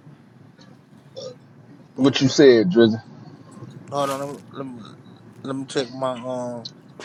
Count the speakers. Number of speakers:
two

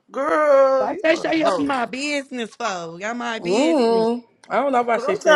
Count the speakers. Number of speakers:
three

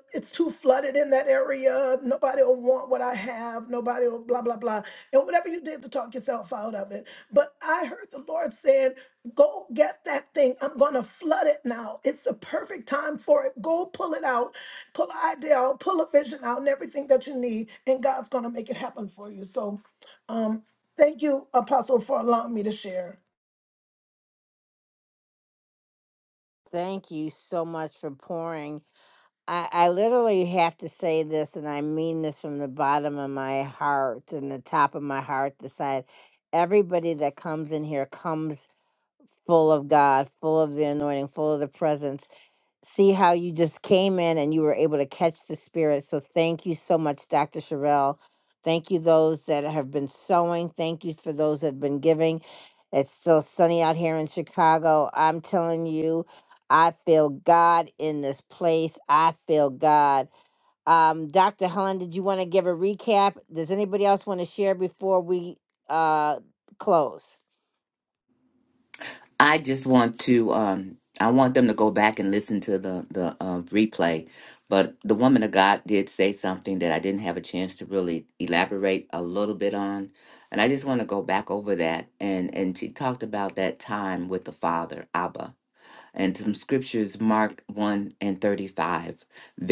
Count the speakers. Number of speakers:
three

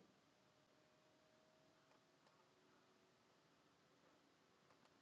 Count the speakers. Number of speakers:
zero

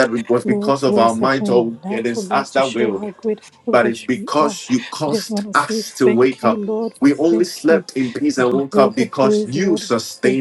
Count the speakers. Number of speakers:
two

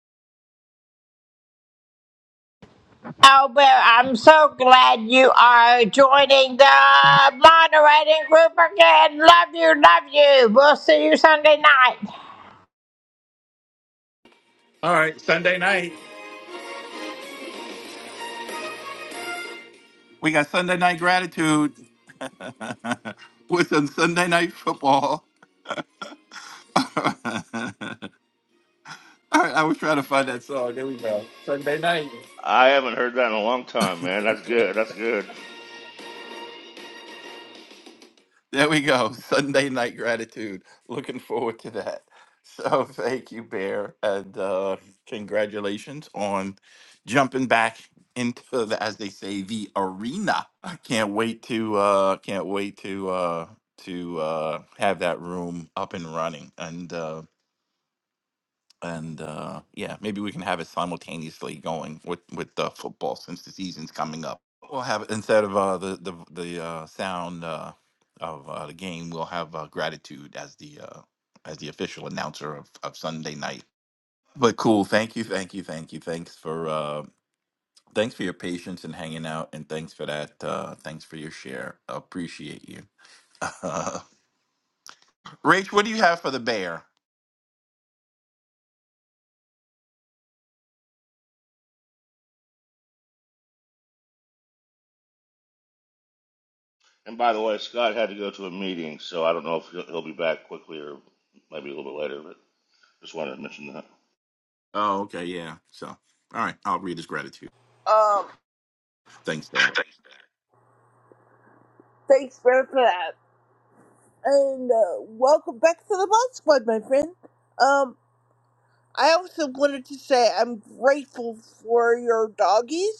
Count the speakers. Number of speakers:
four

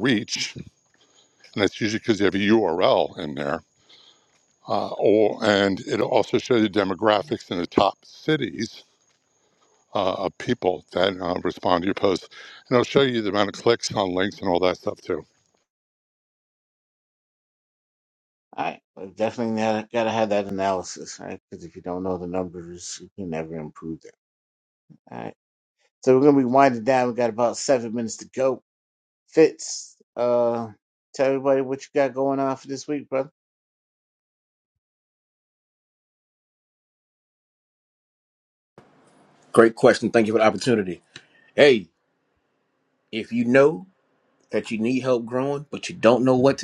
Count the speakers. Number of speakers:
three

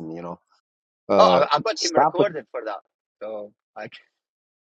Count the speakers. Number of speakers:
two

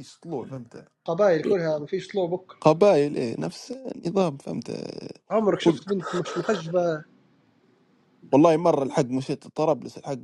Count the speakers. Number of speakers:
two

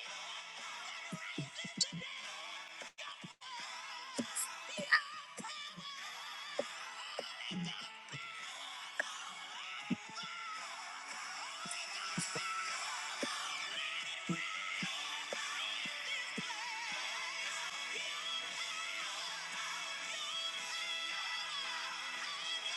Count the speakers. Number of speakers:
zero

